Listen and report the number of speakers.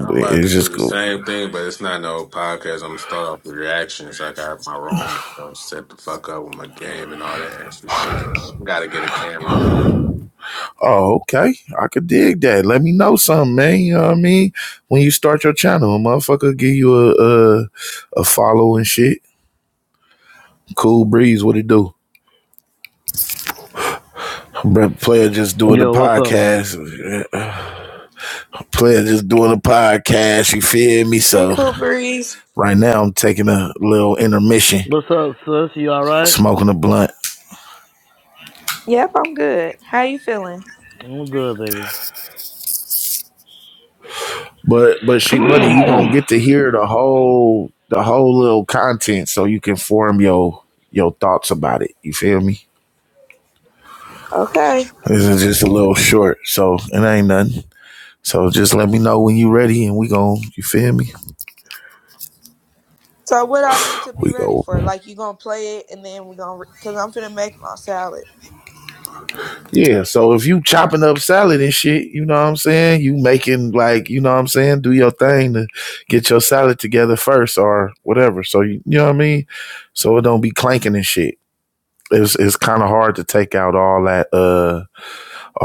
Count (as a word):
four